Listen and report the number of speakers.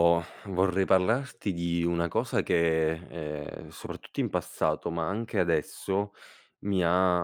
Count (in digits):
1